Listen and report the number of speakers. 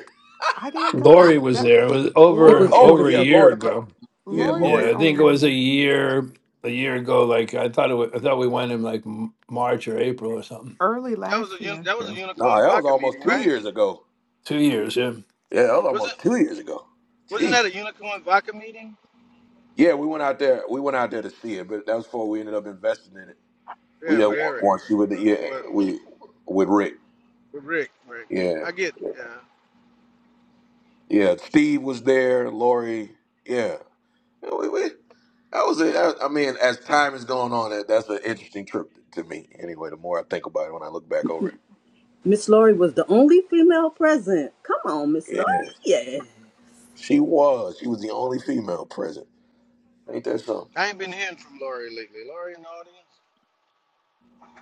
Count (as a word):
five